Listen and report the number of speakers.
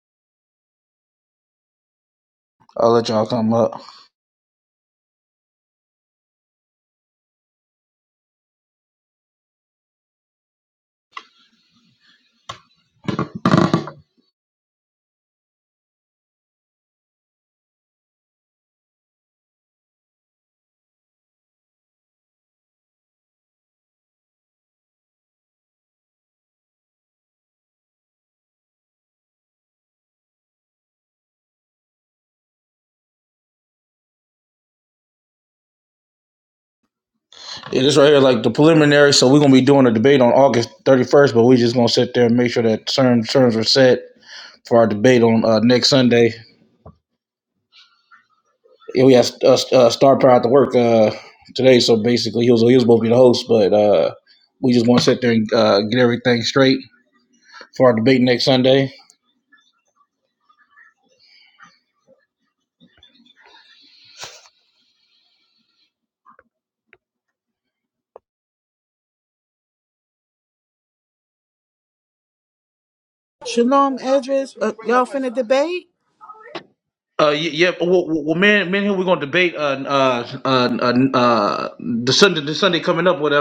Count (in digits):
2